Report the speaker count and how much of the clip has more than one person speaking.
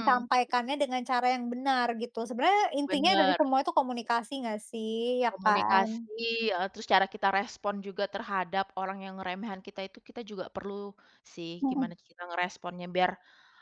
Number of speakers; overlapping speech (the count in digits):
2, about 12%